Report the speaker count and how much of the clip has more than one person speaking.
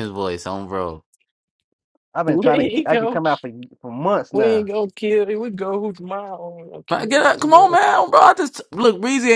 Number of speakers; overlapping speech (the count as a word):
three, about 22%